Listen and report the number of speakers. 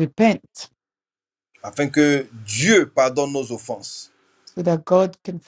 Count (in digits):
2